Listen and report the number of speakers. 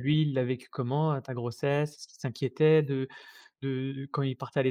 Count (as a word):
one